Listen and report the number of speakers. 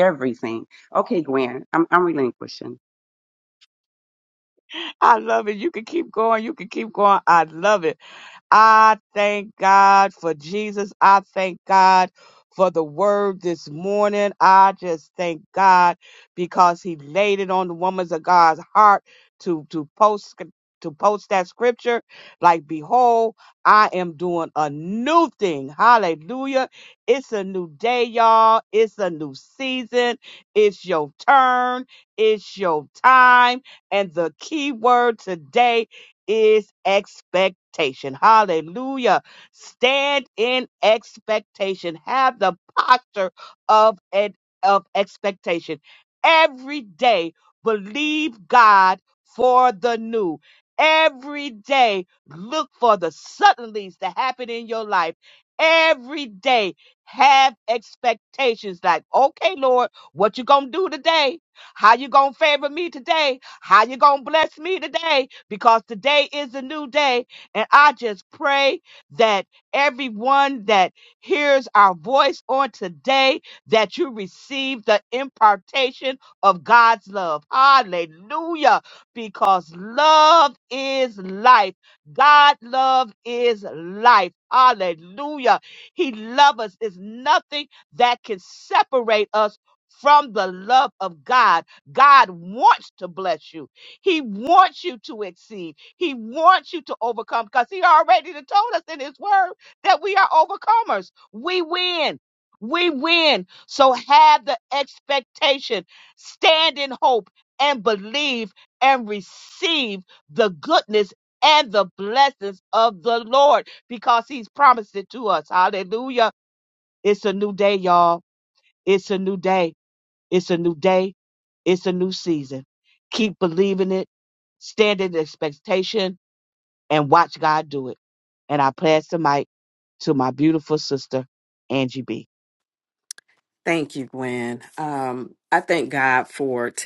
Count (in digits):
3